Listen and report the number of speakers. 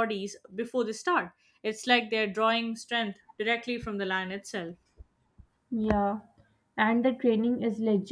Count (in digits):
2